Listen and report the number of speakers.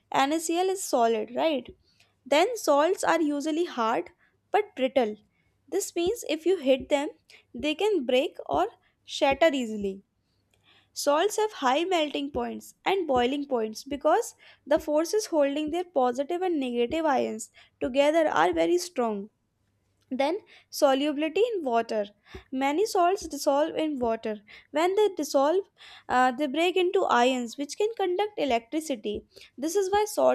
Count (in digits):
1